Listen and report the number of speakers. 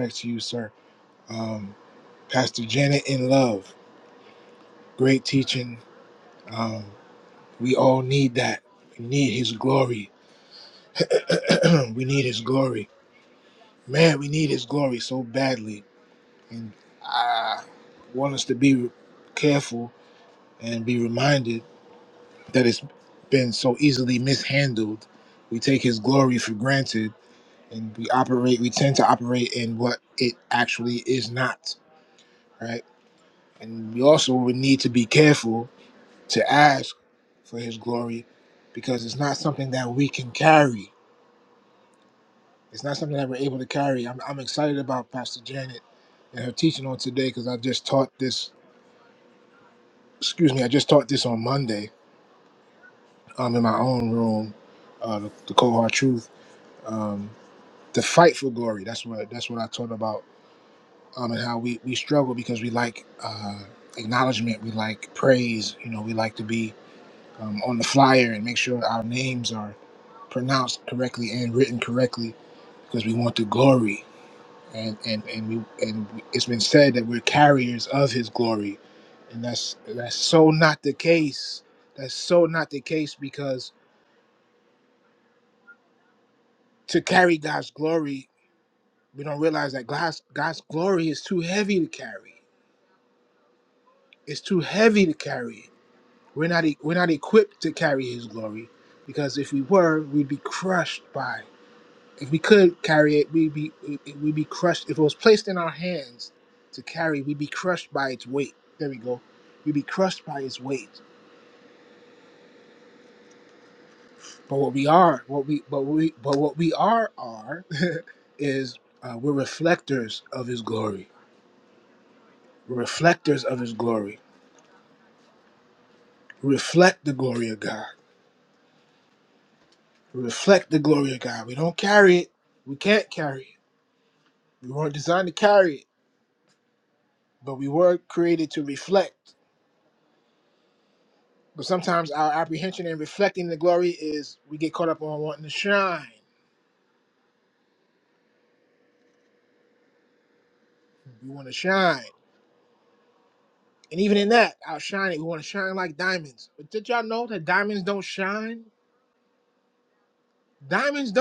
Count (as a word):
one